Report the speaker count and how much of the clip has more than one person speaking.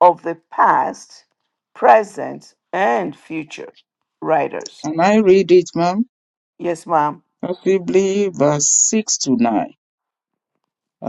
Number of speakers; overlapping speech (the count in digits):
2, no overlap